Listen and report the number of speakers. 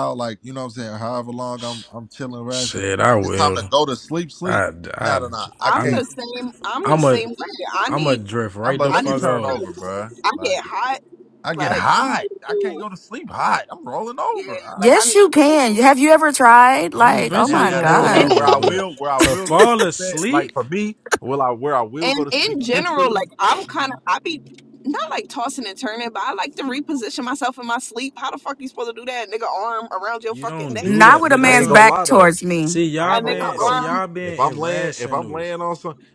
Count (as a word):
four